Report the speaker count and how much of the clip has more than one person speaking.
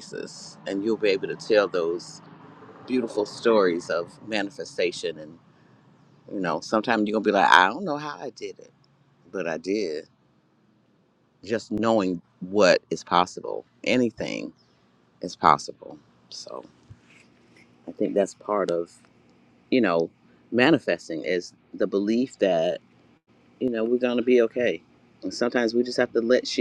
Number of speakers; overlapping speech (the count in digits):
1, no overlap